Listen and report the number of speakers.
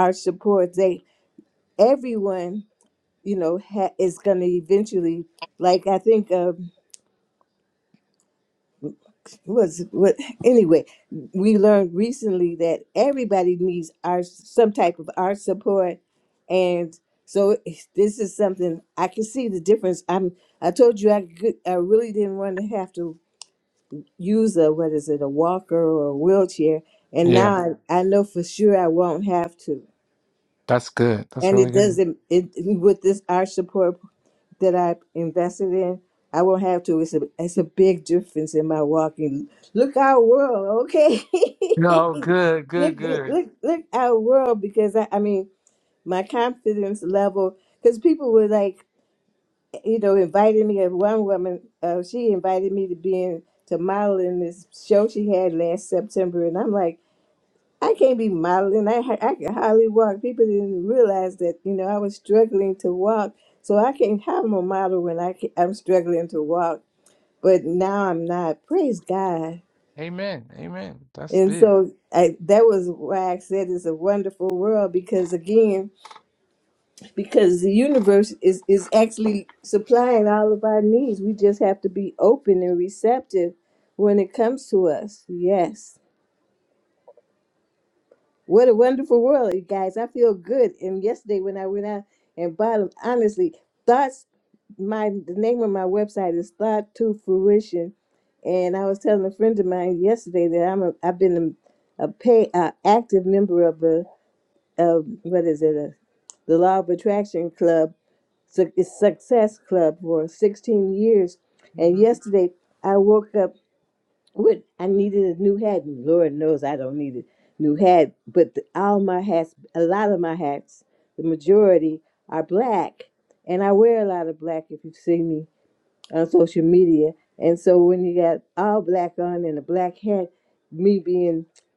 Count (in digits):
2